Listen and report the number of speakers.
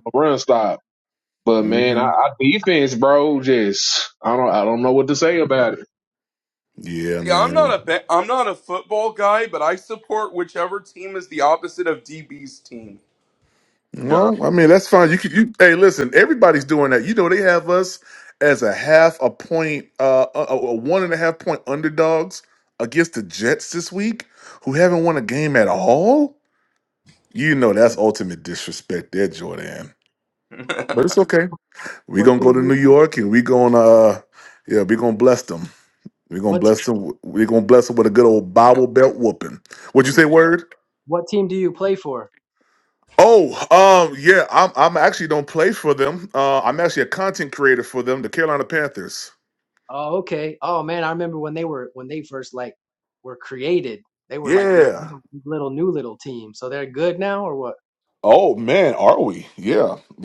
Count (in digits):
4